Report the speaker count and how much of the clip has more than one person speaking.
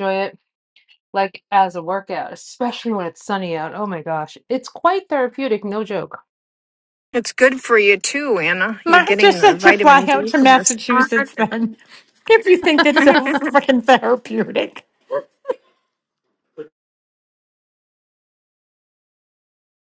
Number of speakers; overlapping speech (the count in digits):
3, about 11%